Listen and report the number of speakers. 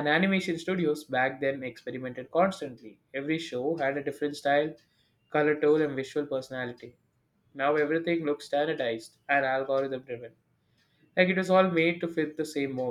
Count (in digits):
1